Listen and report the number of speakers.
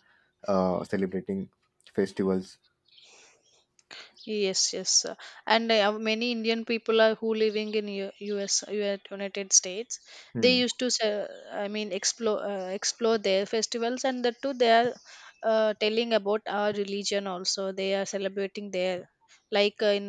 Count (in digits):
2